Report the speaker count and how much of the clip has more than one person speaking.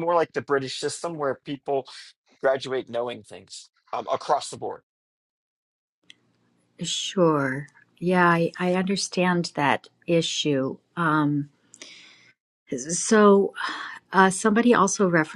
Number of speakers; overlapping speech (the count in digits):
2, no overlap